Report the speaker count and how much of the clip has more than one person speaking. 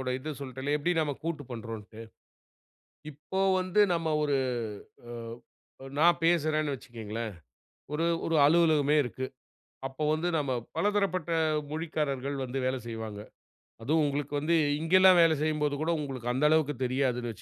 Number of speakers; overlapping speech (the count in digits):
1, no overlap